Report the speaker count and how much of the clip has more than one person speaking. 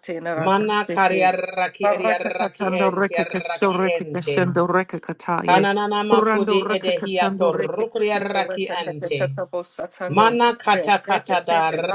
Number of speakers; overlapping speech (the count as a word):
two, about 73%